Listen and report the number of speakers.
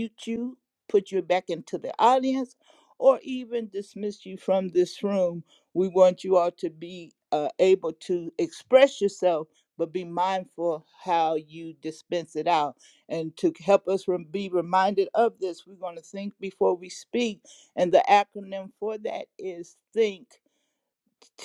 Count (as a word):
one